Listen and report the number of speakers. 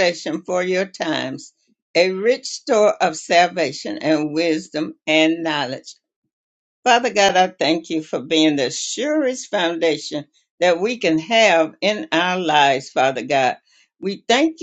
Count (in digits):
1